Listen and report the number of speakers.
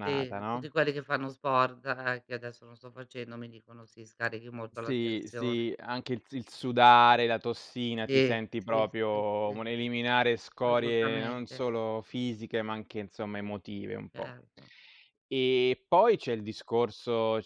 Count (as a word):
two